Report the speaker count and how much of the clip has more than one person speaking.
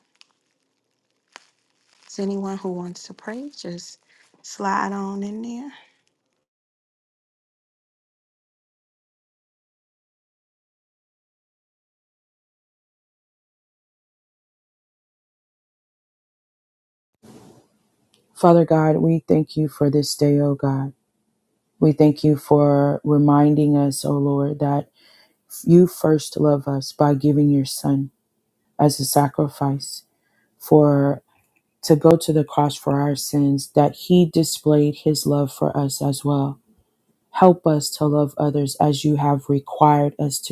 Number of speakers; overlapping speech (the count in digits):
2, no overlap